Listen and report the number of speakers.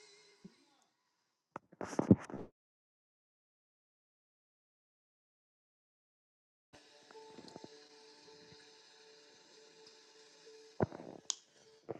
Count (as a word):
zero